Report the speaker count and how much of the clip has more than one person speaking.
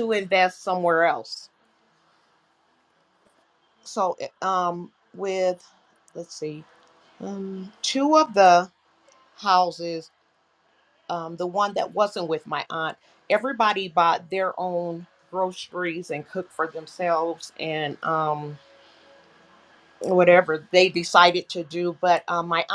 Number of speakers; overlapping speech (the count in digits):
1, no overlap